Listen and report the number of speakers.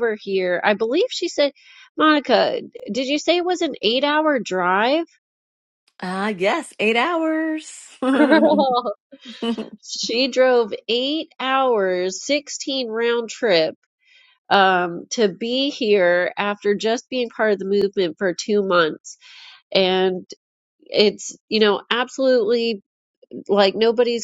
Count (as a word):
two